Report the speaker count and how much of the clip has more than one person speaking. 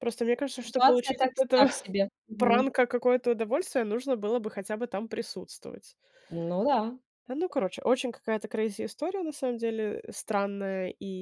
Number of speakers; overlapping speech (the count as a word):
two, about 12%